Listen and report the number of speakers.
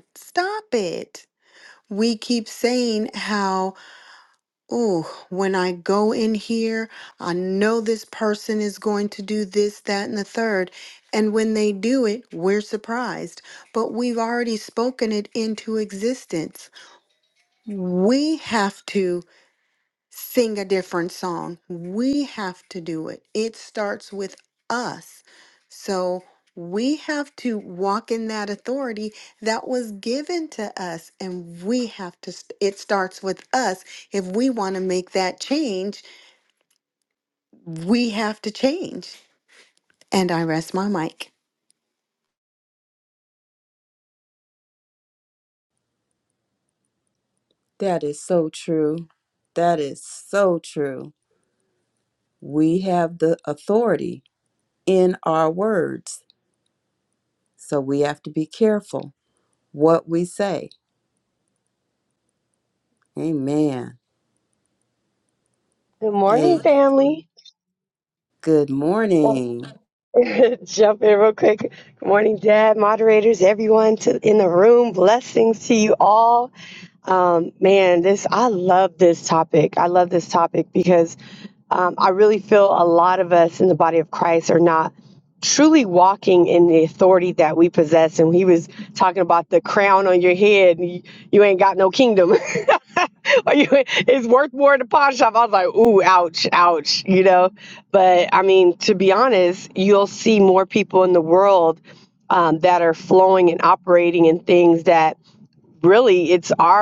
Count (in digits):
3